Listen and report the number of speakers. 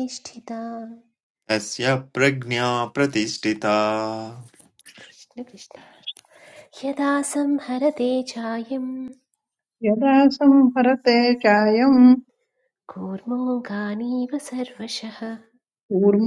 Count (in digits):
3